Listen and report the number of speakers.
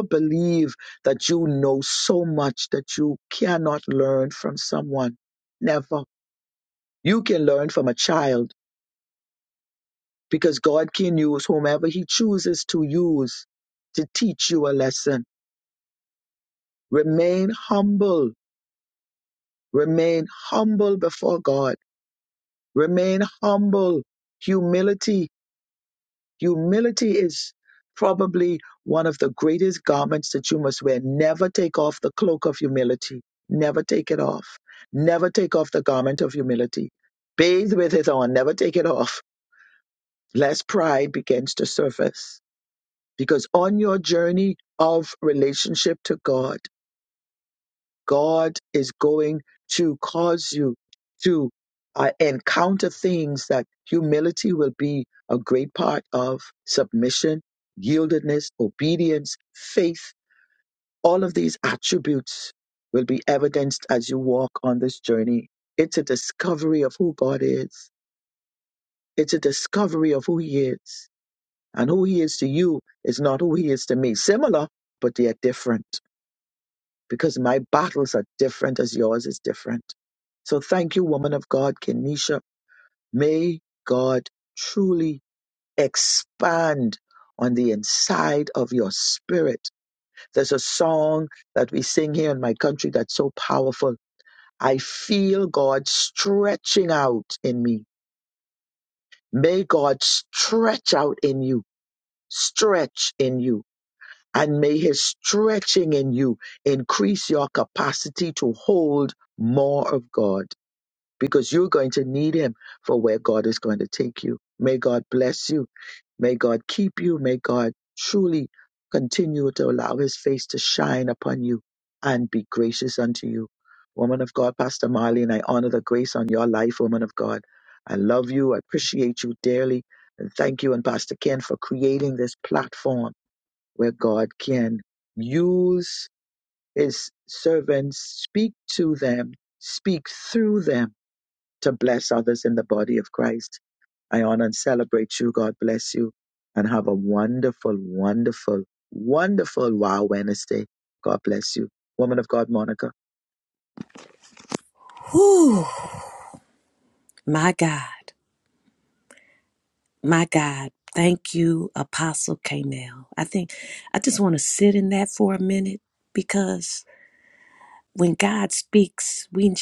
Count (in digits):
2